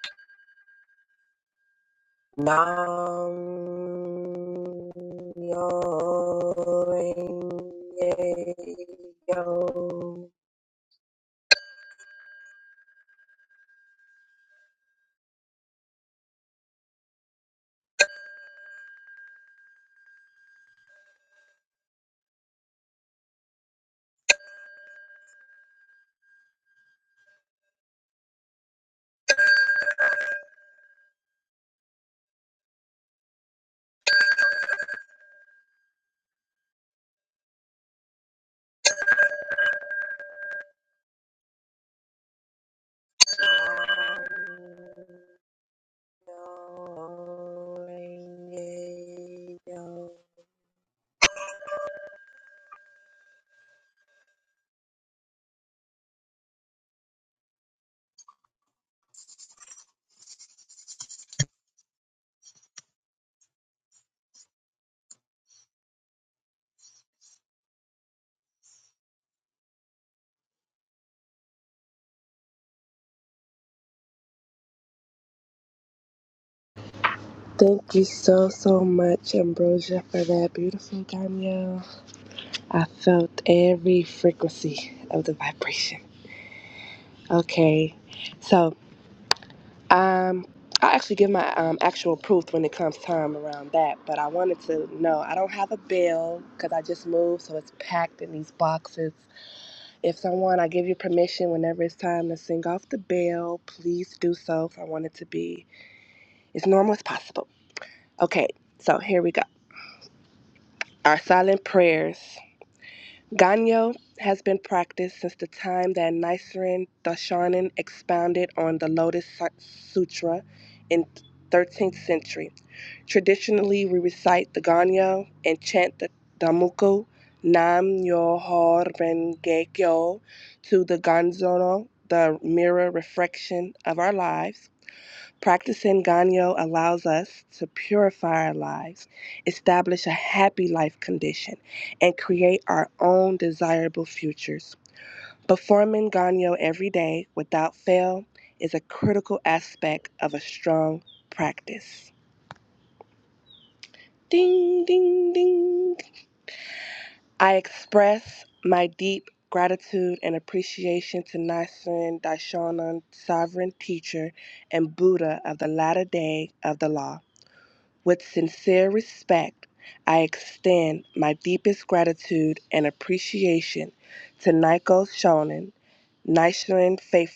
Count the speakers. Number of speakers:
two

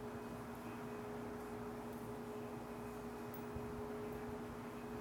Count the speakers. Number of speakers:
zero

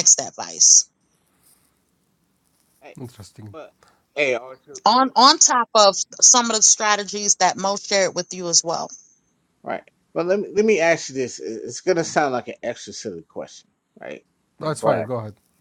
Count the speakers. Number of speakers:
three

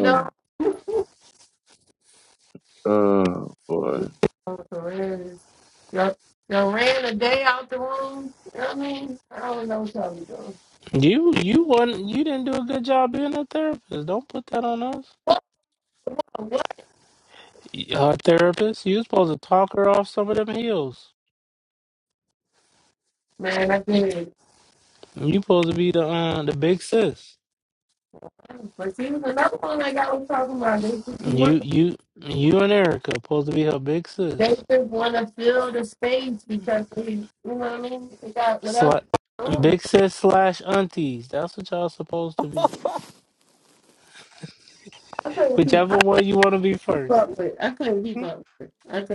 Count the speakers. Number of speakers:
three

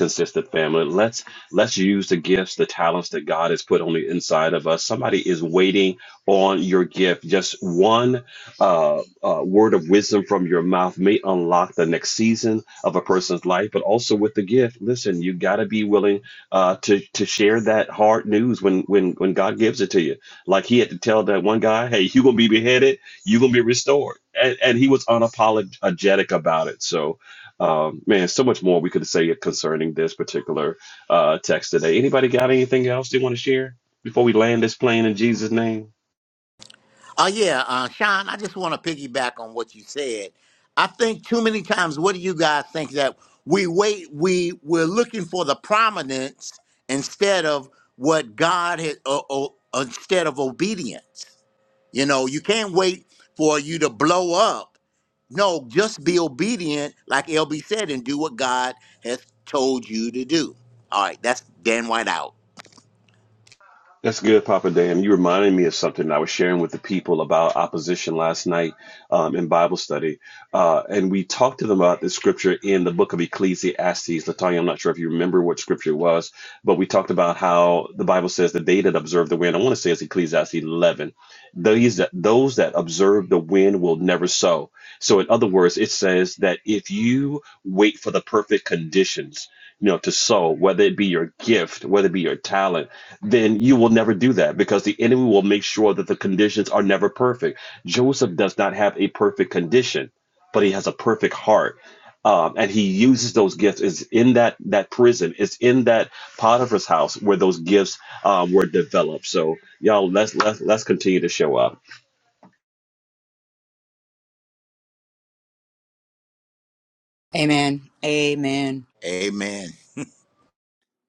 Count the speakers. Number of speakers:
three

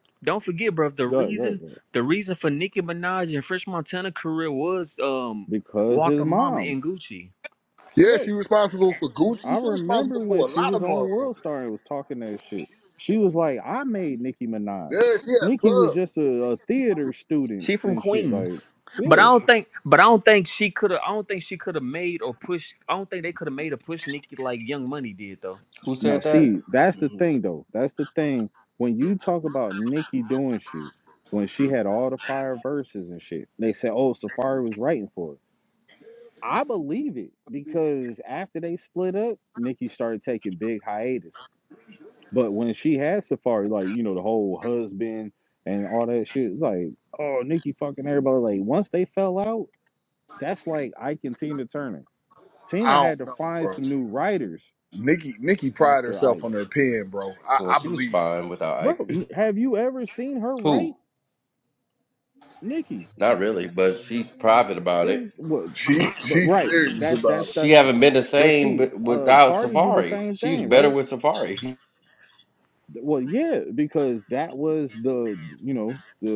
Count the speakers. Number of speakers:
four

